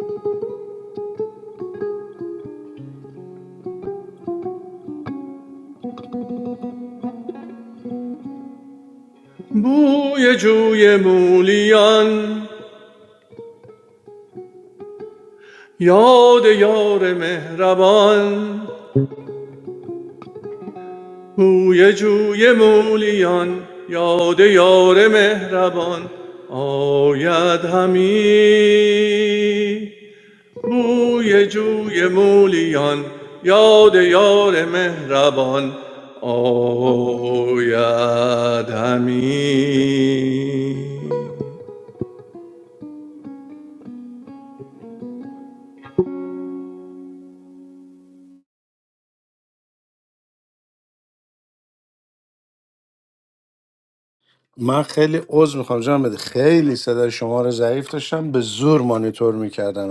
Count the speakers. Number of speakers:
two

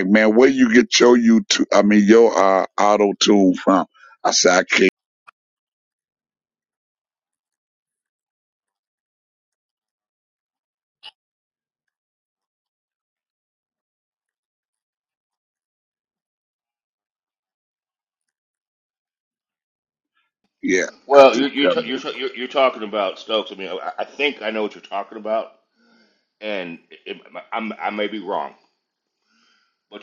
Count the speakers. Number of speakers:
two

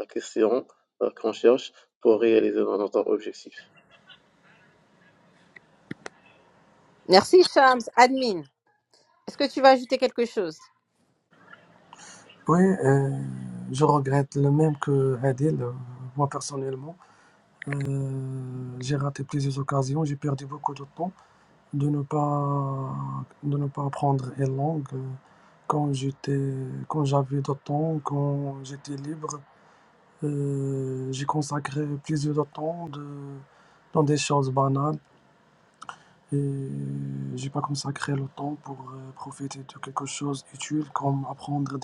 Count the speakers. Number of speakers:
three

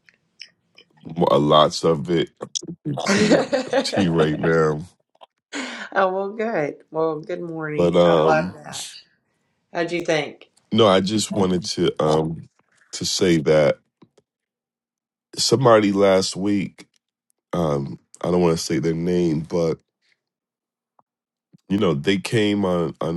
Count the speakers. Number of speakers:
two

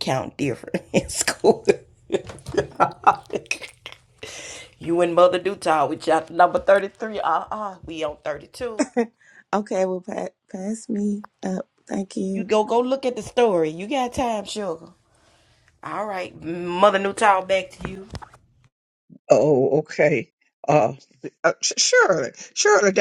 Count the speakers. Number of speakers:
three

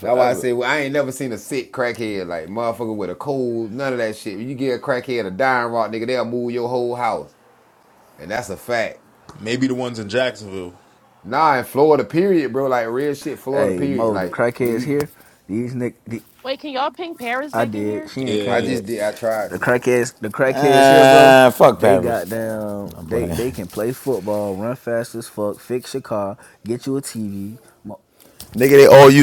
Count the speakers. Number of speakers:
five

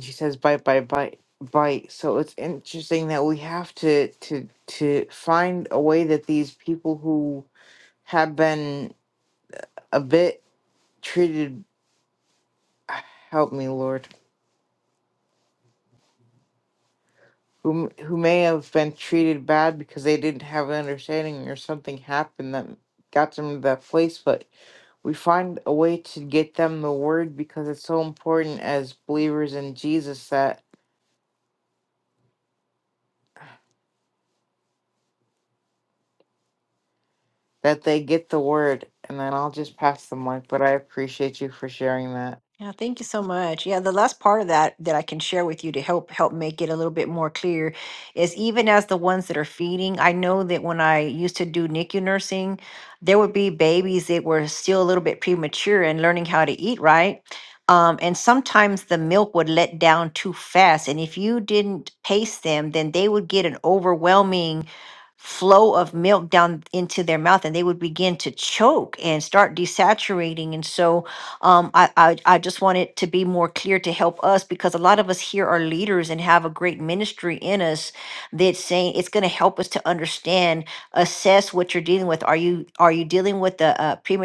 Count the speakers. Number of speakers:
two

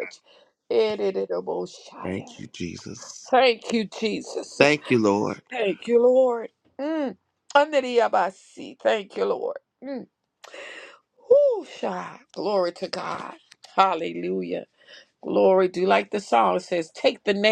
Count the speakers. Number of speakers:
two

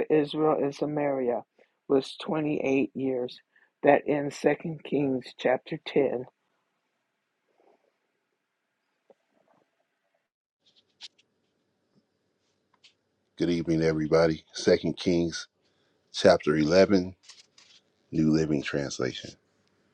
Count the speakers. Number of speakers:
two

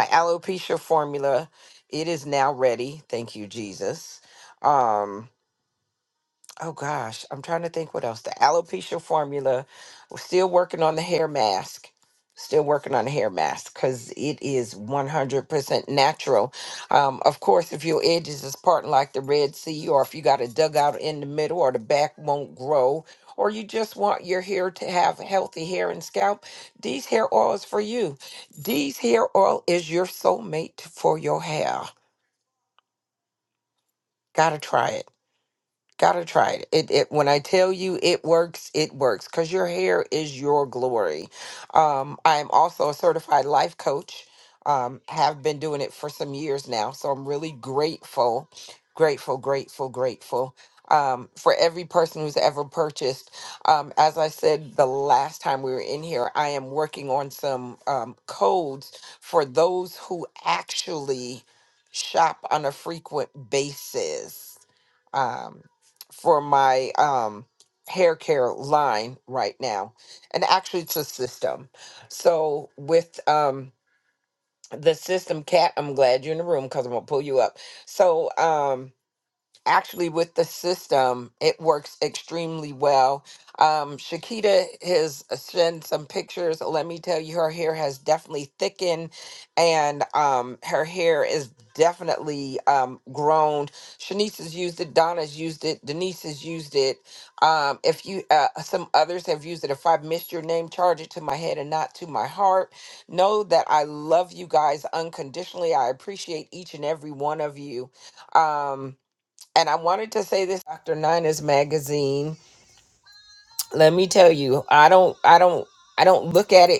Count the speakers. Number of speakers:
one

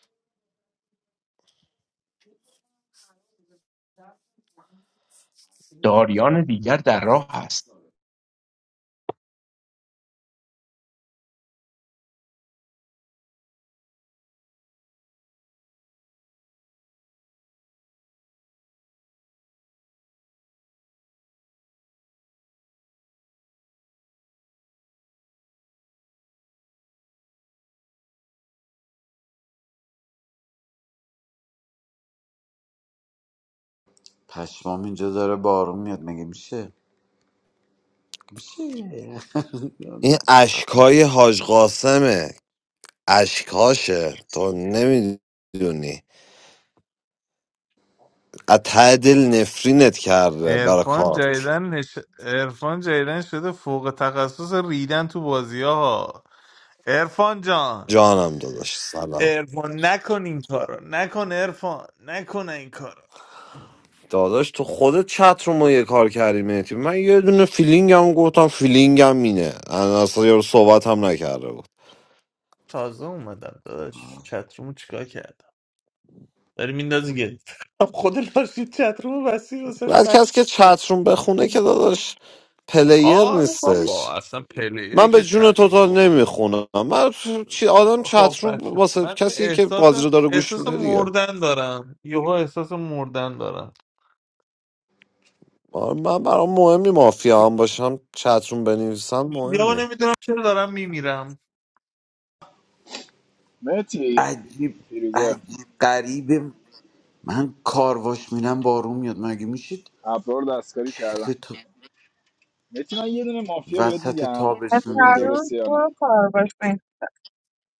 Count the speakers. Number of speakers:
six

